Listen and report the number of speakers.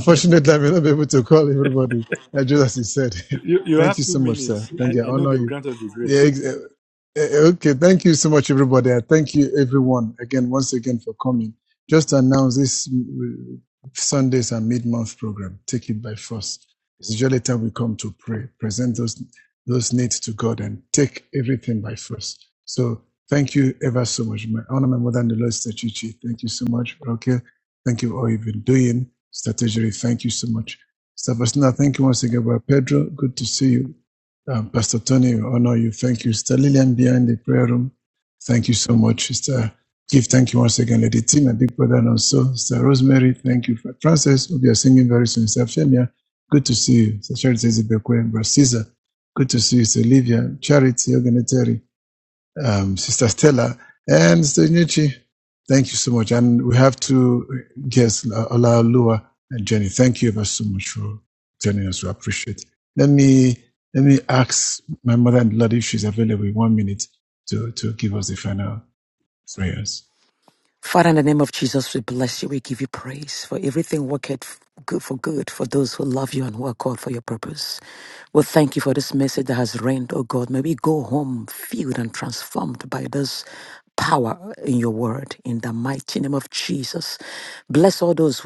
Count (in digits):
3